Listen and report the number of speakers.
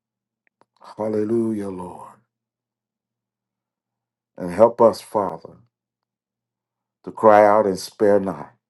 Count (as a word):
one